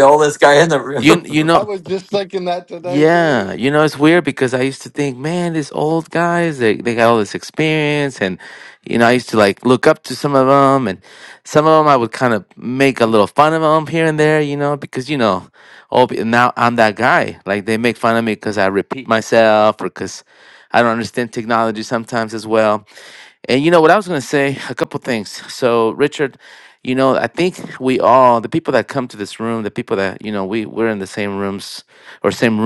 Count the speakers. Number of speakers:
three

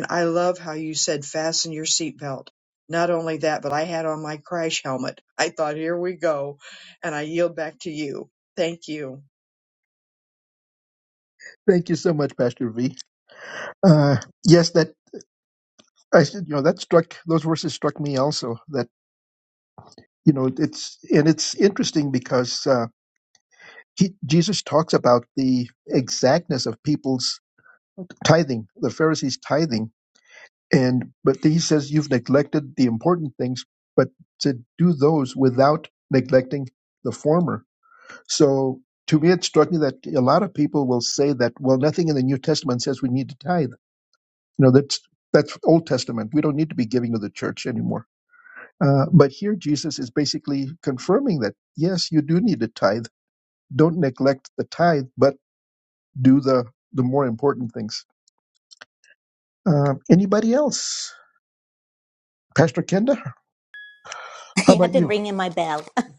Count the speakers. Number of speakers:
three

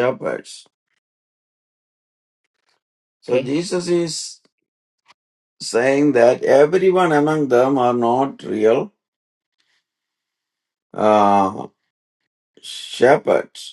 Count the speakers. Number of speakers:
one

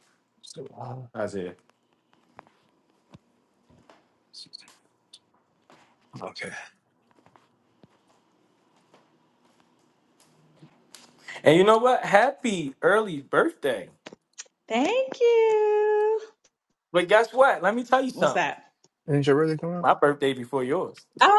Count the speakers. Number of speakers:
three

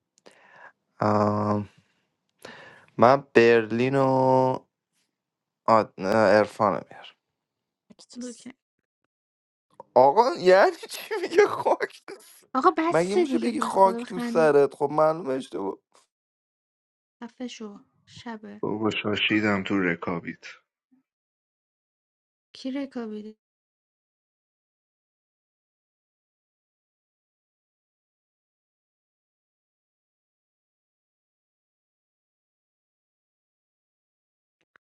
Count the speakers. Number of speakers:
three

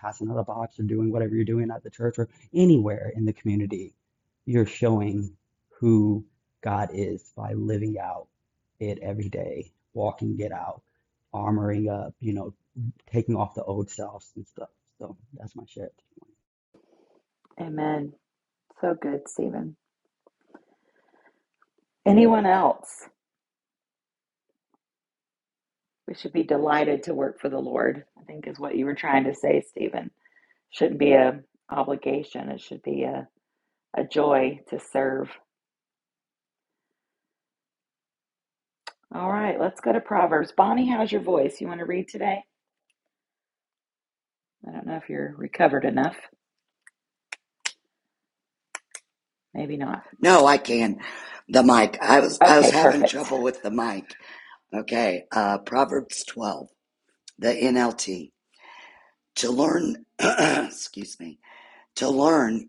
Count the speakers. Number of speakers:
three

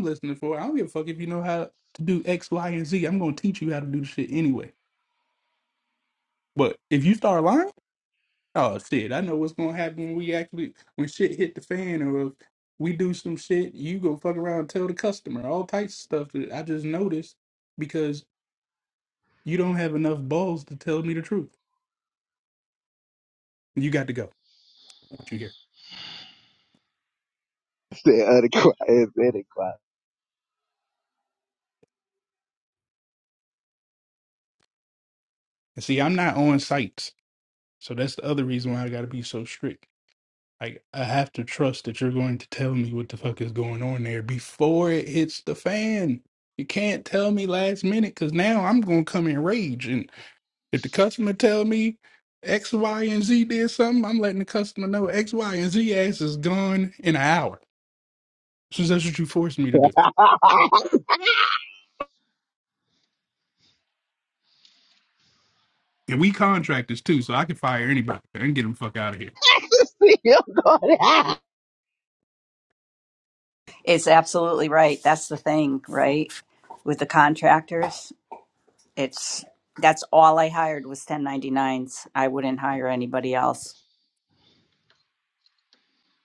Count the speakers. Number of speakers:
three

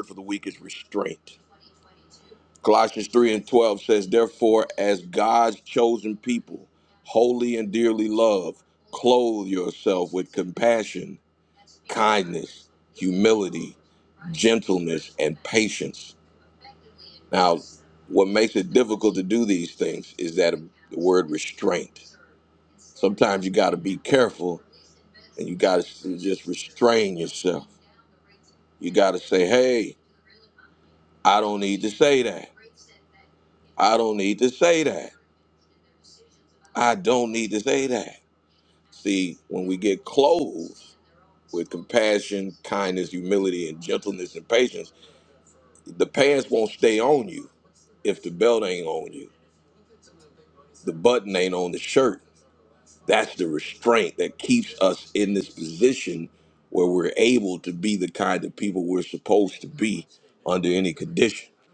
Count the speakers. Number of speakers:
one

